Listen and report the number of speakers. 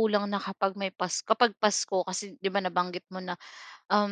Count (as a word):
one